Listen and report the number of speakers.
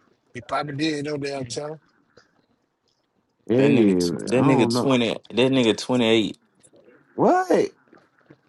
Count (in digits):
3